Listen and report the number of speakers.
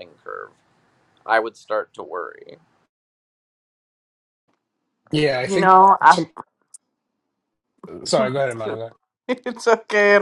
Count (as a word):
three